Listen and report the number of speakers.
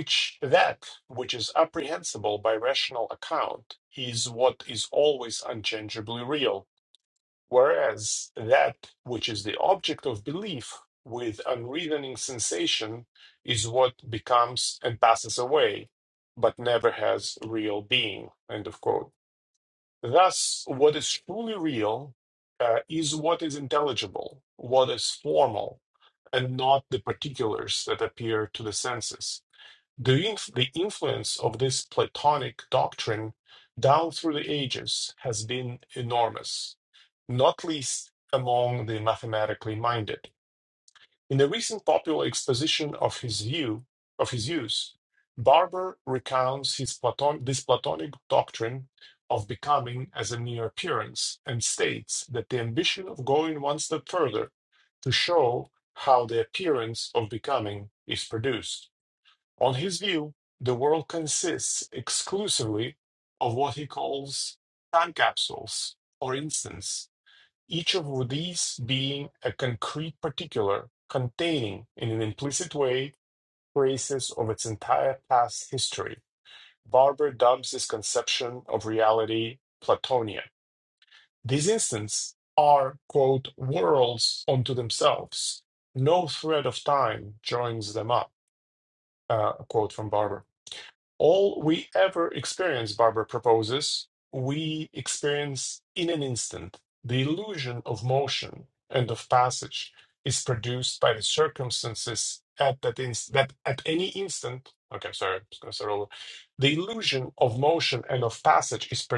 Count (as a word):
one